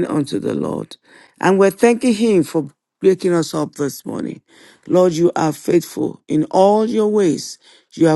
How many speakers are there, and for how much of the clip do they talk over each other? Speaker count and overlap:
one, no overlap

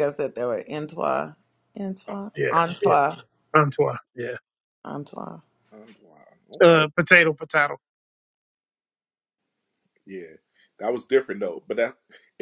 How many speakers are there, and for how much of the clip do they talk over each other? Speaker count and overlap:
three, about 8%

